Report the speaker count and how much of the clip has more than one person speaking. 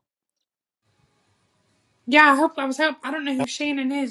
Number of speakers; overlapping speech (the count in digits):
1, no overlap